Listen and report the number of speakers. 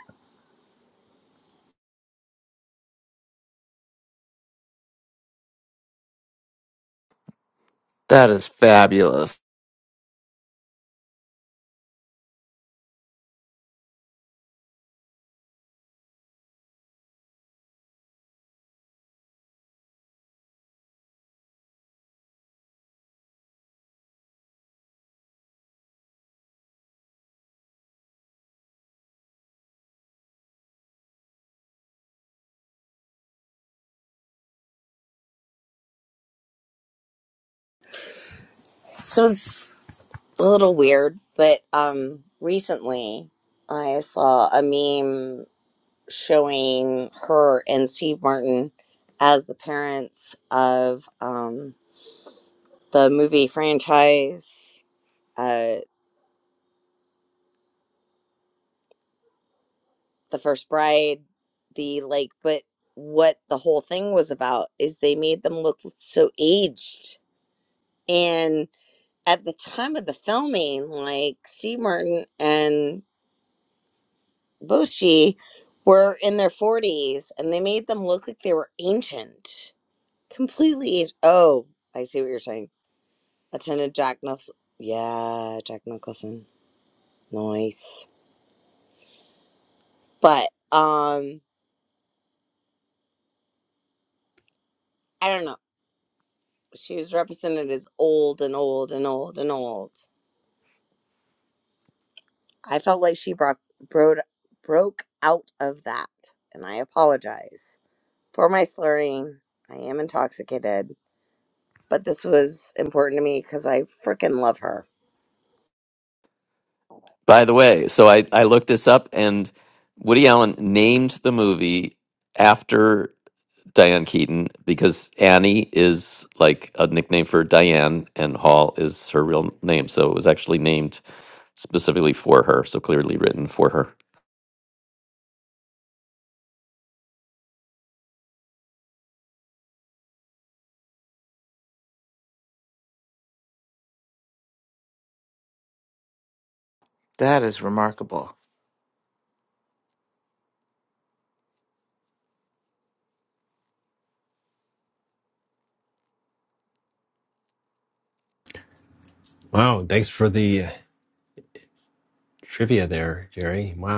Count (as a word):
four